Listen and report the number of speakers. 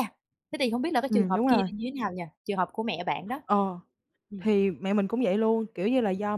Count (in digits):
2